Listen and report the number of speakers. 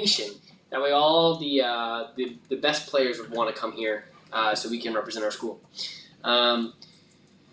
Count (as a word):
one